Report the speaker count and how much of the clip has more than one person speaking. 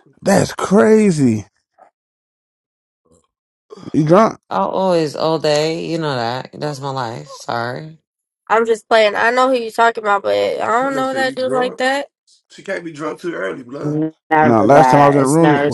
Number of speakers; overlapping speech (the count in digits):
4, about 15%